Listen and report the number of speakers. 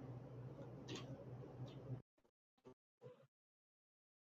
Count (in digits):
0